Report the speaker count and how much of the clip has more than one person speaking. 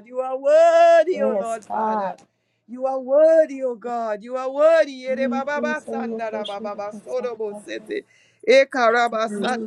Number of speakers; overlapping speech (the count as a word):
two, about 29%